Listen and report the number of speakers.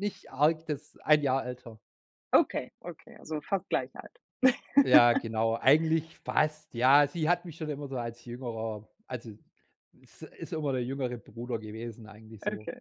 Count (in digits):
2